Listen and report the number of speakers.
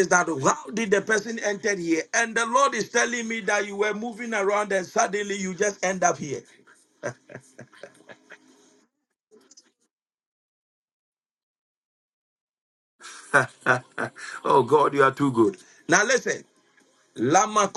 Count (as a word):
one